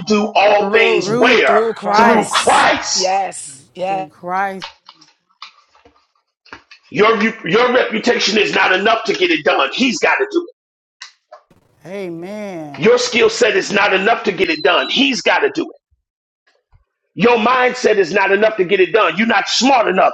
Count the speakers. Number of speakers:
3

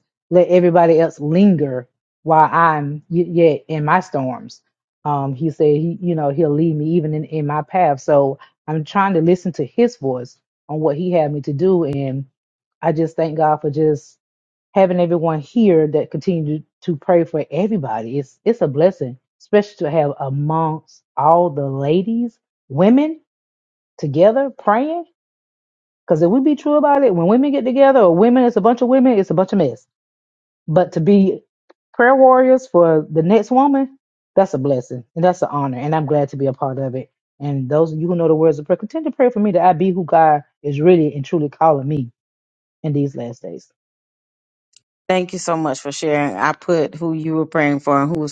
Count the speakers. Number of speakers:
2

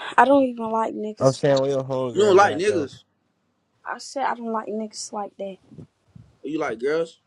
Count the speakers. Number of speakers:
3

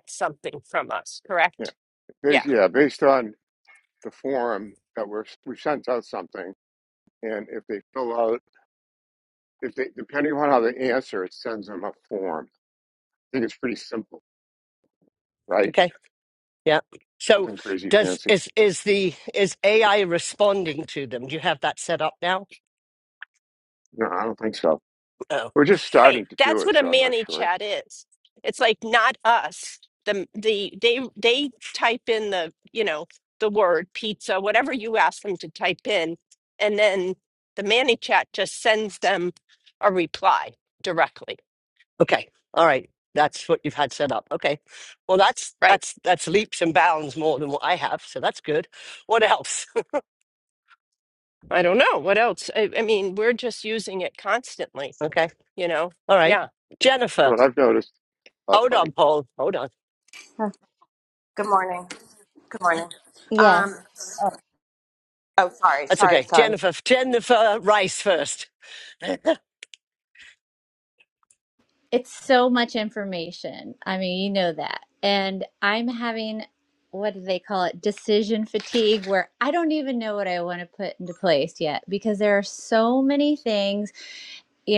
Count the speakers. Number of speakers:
5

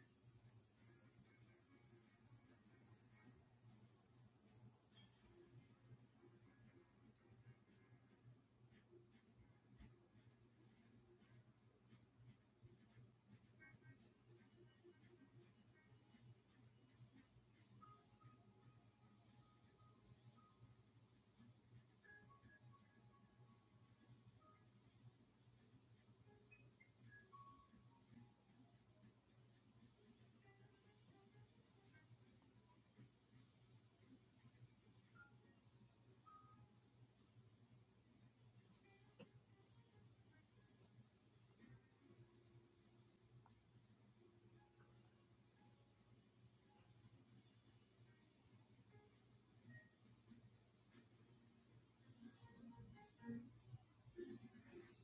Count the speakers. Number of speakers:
0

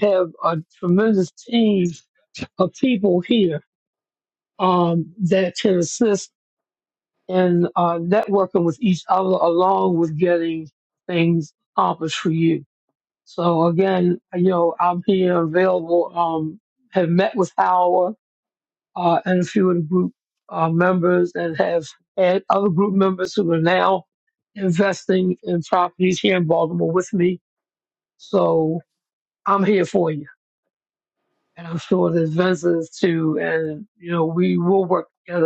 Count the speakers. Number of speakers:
1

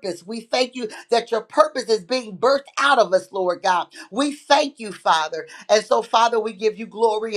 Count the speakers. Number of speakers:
1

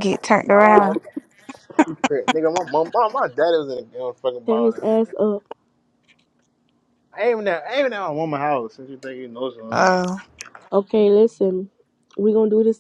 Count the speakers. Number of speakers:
3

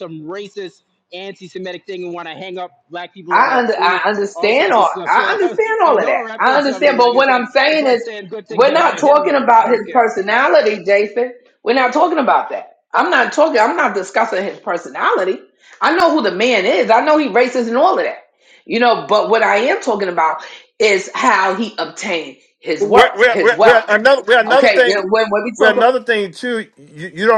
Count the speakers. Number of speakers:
3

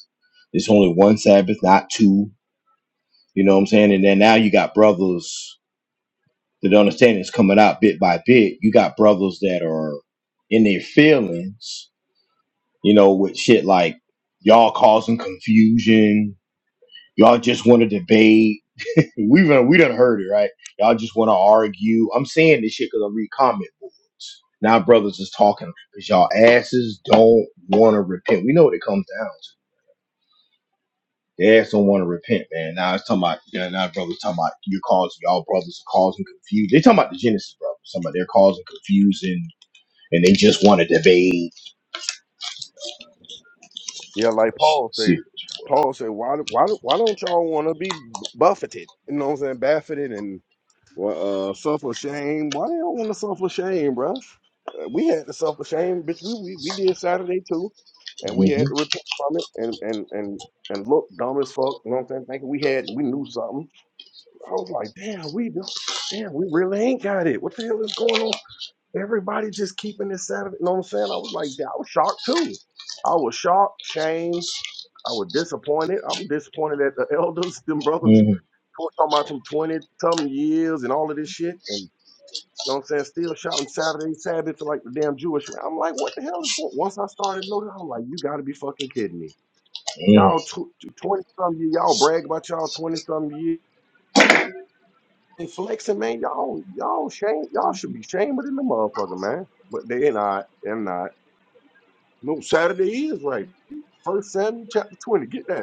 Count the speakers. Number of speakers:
2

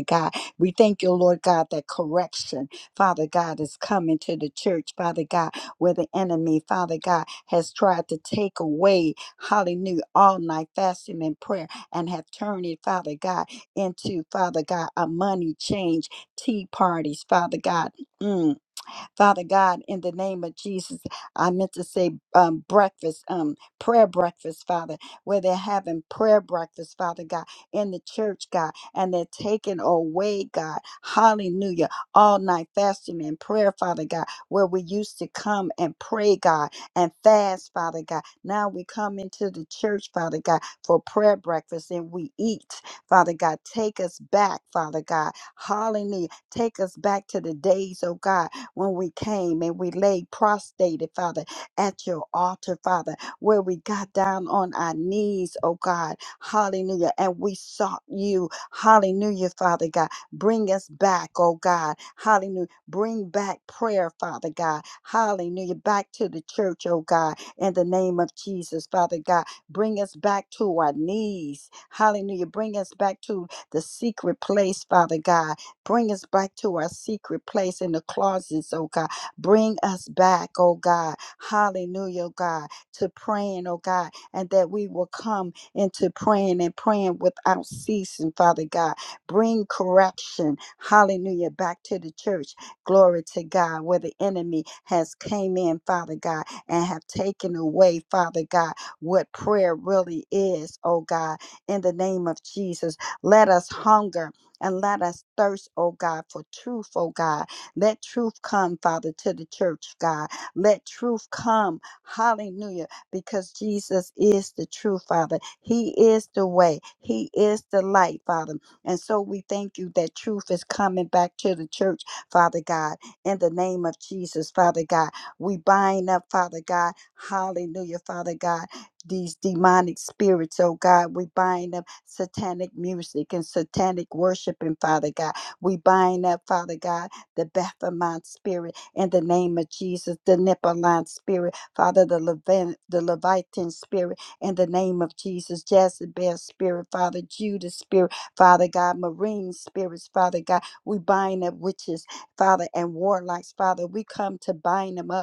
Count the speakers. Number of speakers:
1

